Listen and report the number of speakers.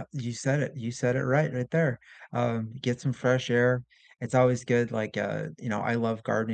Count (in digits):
1